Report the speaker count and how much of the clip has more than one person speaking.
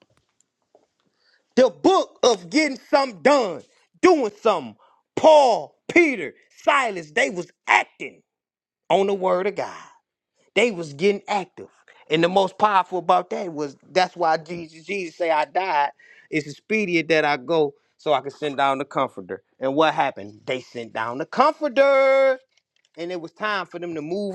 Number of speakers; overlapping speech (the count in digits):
1, no overlap